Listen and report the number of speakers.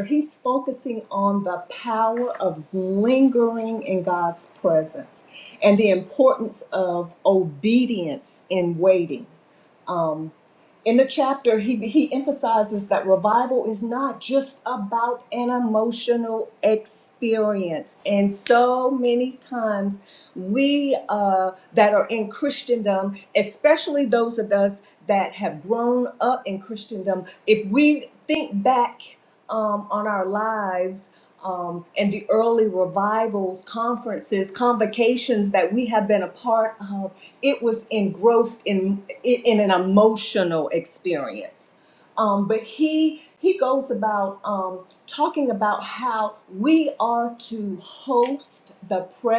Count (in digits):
1